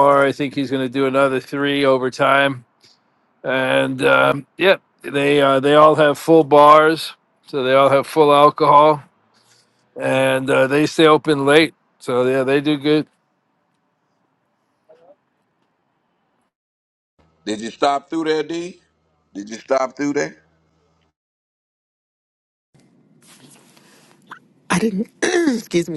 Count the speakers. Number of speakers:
three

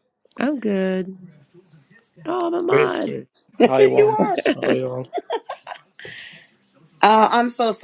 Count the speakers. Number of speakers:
three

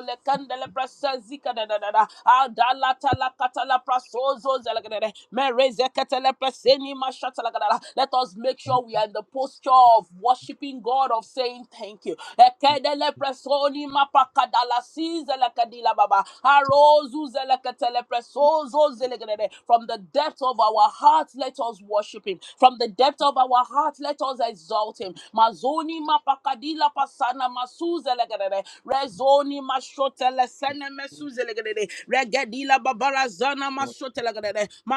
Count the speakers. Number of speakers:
one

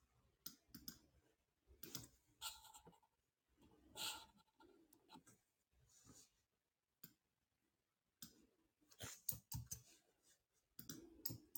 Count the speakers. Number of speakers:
zero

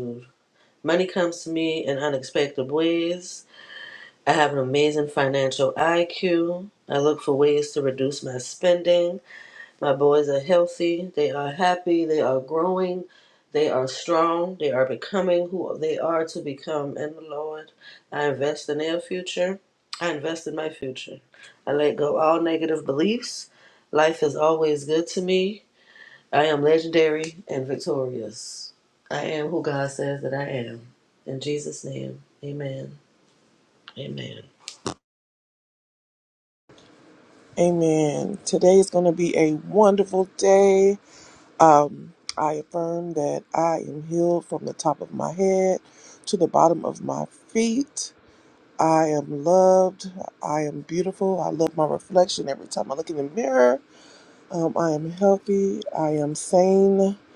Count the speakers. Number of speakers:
two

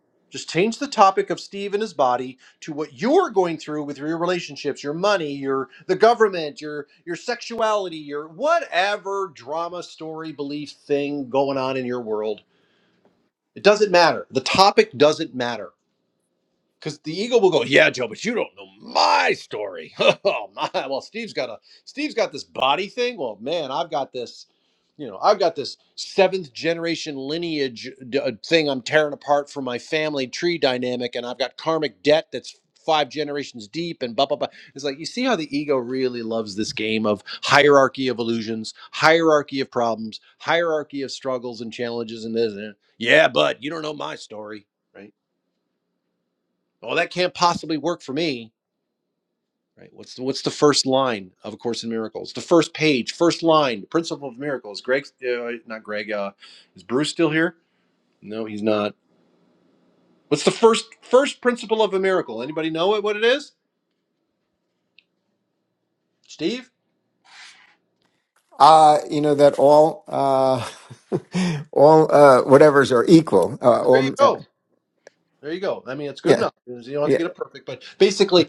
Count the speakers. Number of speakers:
two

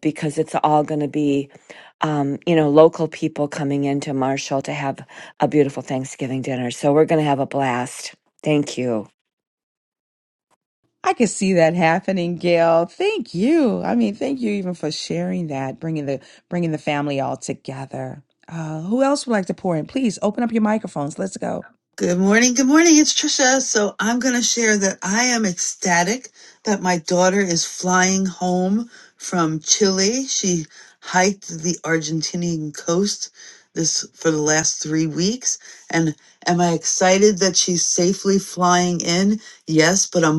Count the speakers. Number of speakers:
three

